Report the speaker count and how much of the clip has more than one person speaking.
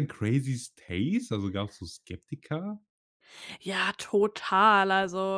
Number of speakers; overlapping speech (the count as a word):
two, no overlap